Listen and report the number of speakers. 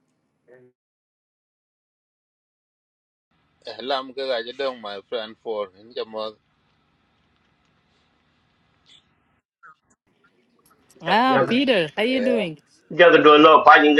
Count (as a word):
three